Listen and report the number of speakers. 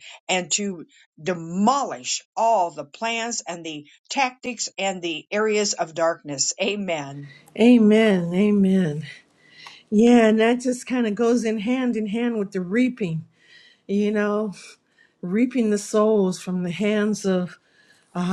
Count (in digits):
2